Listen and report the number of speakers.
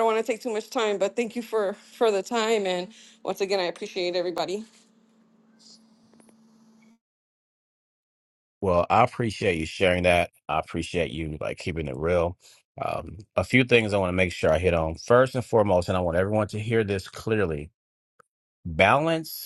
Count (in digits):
2